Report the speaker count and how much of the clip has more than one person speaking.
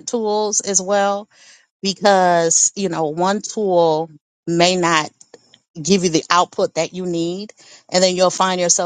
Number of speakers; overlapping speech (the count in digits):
1, no overlap